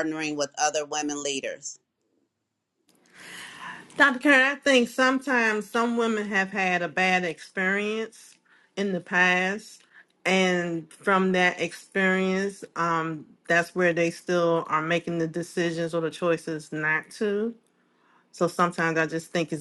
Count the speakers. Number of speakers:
two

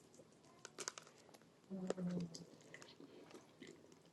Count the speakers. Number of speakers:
zero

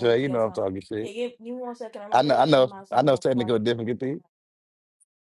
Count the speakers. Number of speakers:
one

